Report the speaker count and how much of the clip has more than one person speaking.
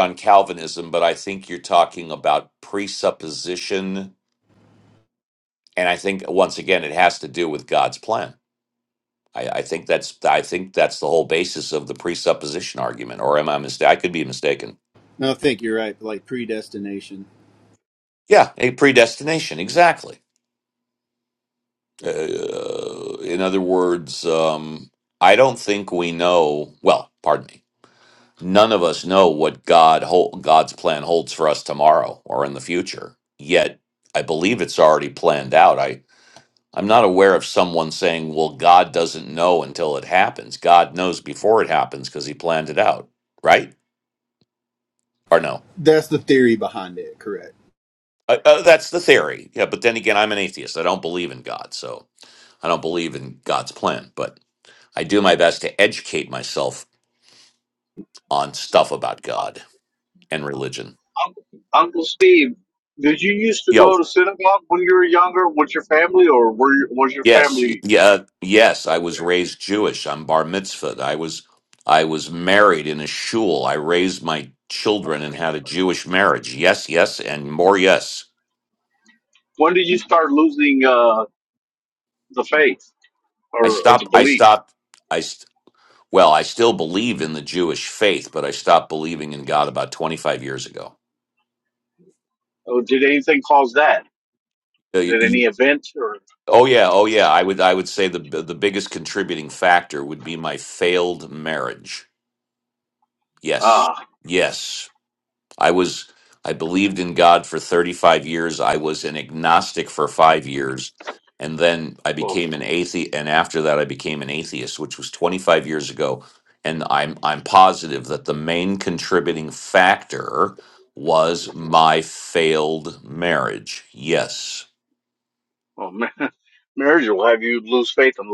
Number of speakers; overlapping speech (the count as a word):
three, about 2%